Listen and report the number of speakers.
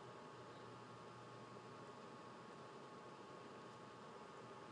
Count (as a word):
zero